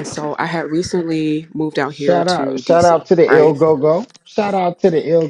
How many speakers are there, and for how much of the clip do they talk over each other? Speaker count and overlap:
2, about 32%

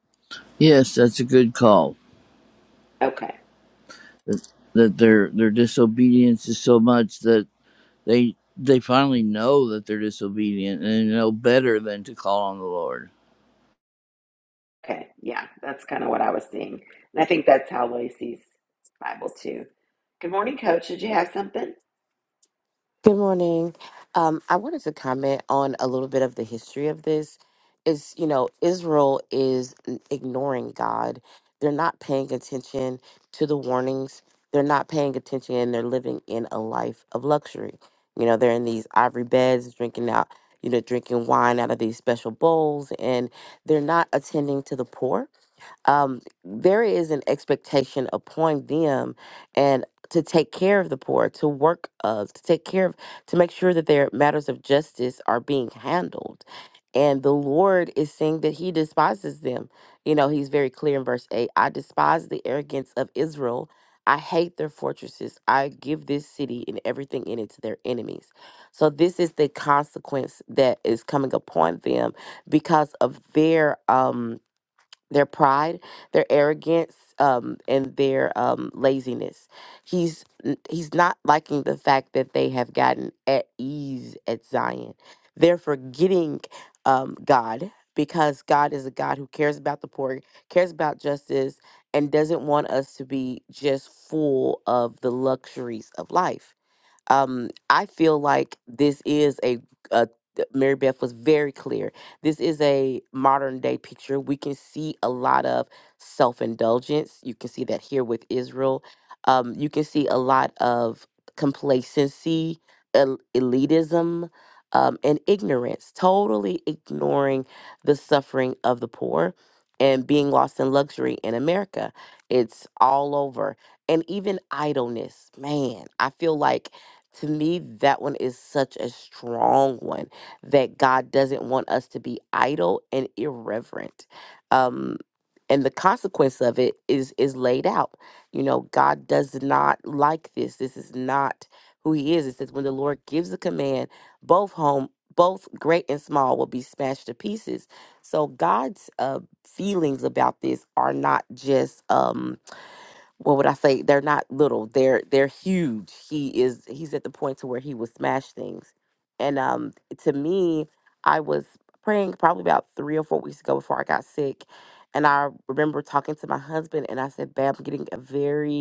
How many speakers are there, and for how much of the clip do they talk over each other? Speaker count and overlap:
3, no overlap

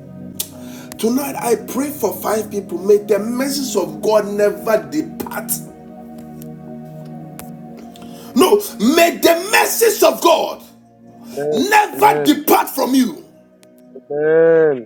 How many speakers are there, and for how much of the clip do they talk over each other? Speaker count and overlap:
2, about 6%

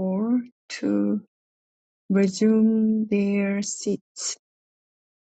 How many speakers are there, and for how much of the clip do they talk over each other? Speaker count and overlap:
1, no overlap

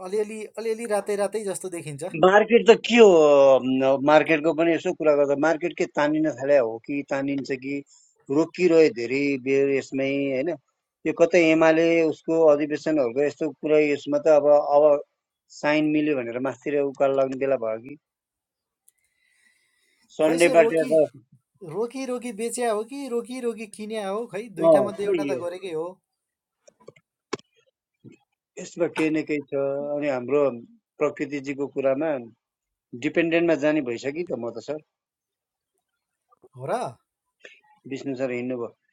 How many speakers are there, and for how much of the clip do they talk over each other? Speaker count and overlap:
2, about 4%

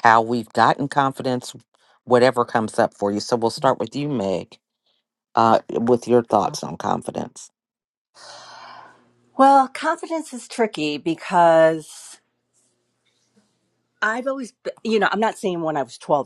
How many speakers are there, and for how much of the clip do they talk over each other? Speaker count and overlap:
2, no overlap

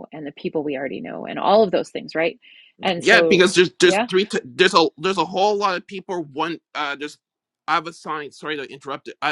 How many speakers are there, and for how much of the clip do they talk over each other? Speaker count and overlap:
2, about 8%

